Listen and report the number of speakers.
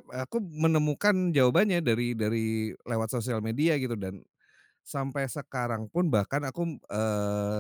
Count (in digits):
1